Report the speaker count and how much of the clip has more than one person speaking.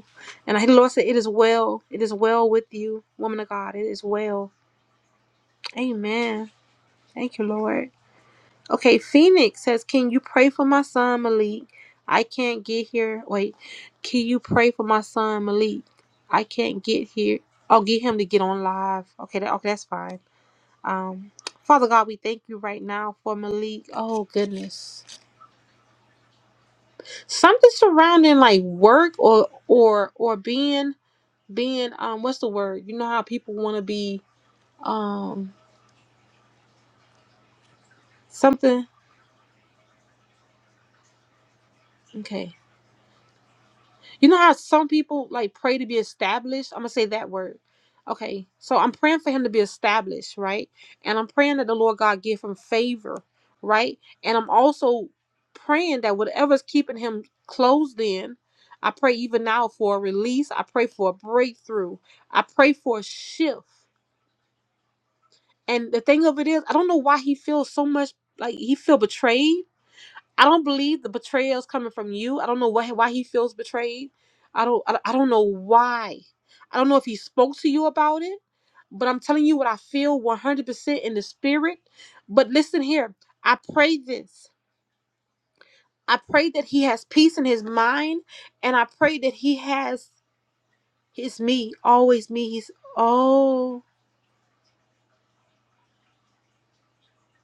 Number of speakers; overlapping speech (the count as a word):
one, no overlap